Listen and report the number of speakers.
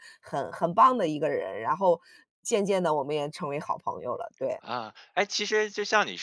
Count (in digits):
2